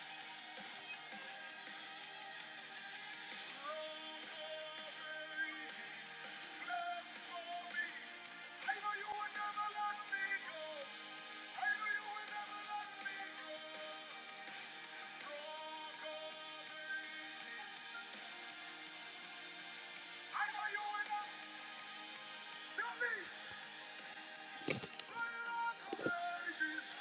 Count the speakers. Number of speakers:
0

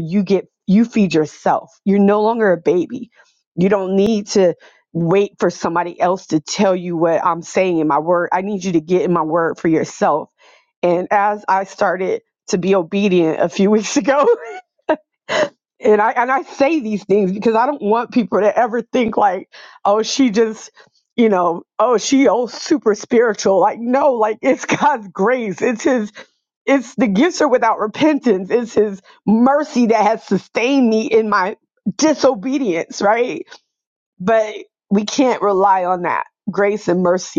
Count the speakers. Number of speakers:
1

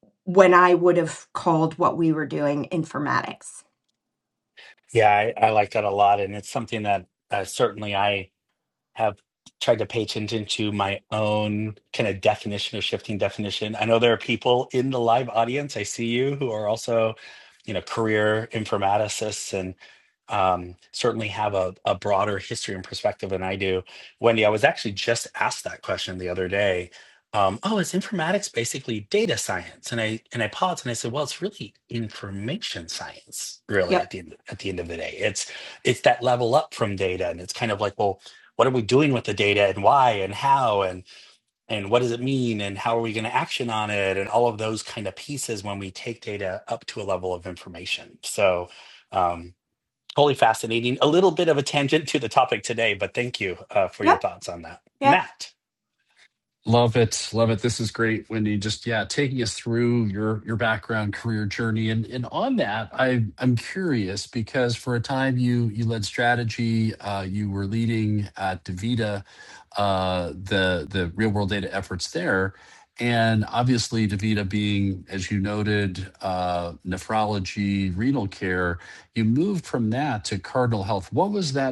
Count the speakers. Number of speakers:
3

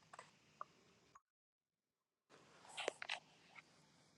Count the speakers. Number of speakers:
0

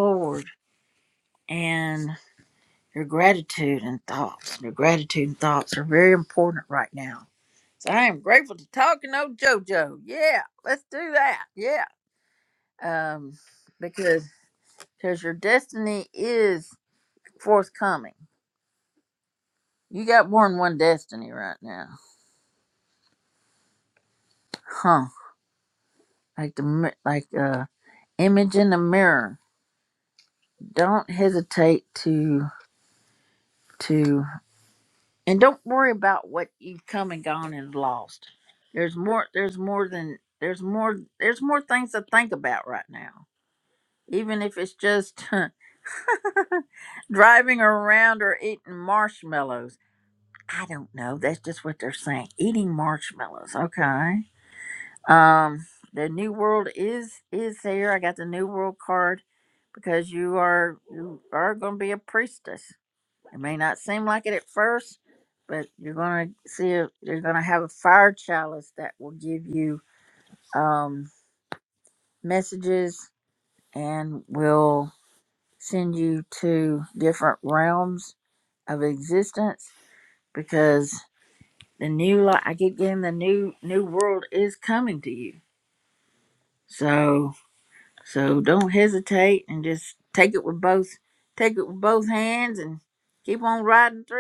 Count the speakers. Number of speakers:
1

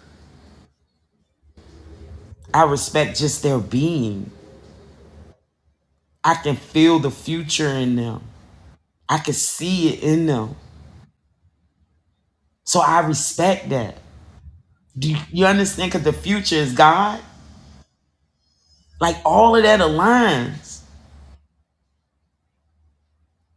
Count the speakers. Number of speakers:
1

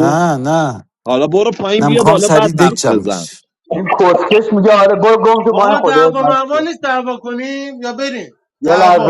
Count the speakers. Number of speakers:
4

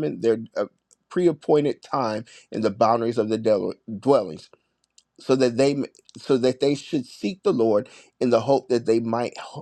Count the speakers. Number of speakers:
1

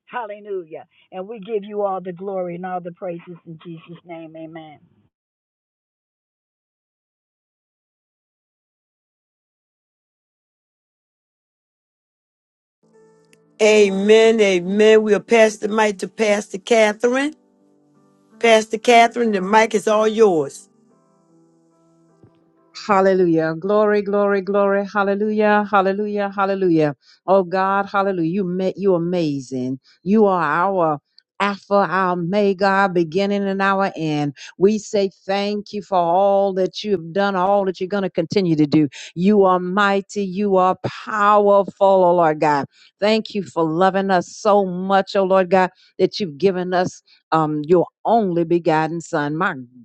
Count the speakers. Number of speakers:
3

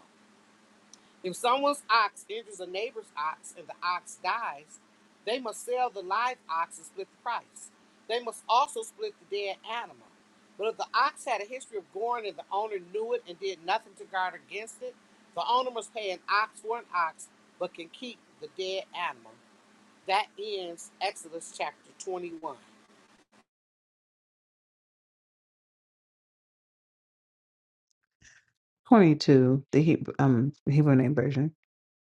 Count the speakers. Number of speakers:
2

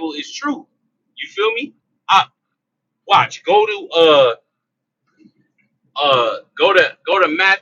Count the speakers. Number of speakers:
1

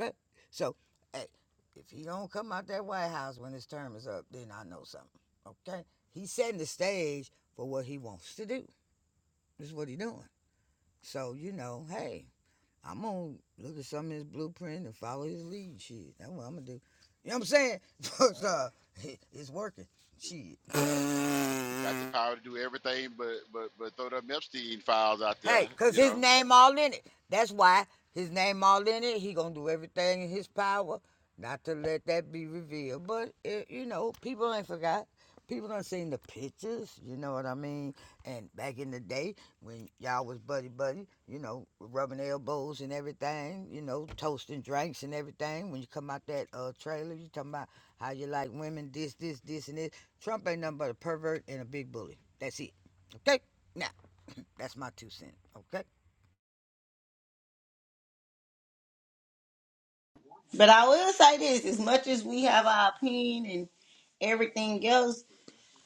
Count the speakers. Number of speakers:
3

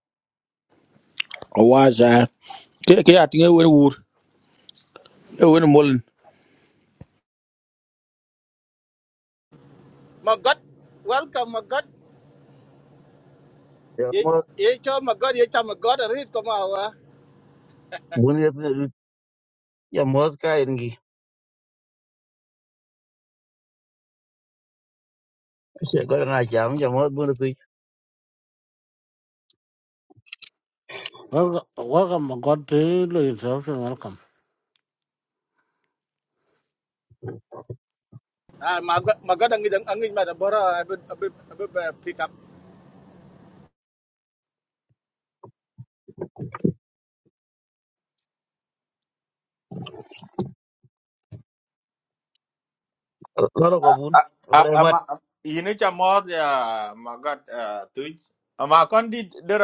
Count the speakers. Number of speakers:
5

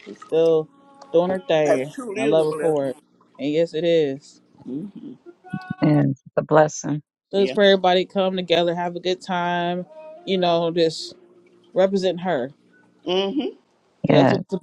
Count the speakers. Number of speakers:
3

